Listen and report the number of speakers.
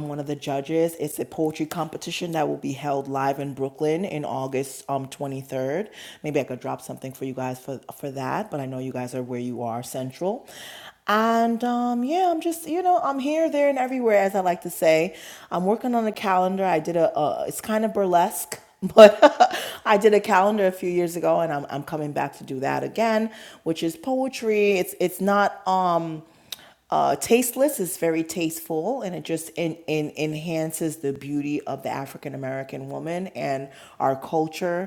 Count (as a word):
one